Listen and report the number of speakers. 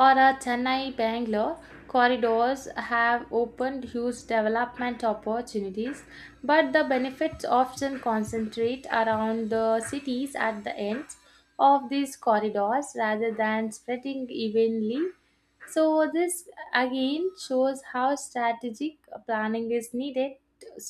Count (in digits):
1